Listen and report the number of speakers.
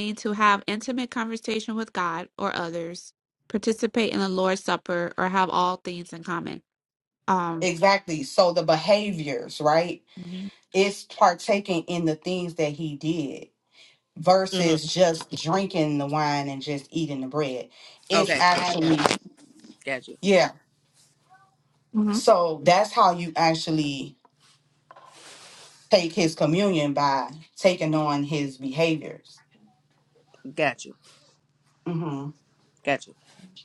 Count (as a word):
three